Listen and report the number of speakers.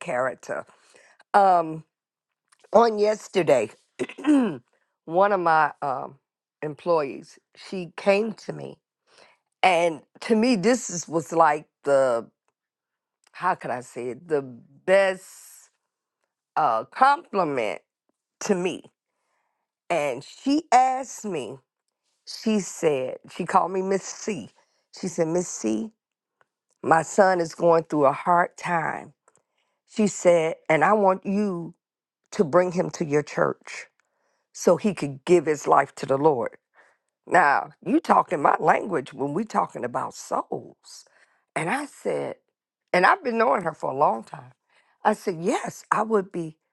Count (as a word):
one